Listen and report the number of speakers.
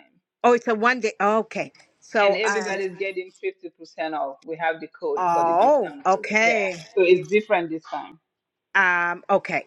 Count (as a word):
two